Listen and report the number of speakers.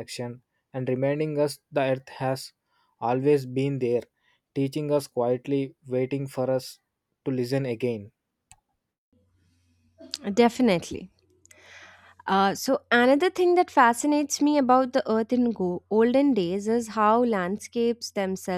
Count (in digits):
2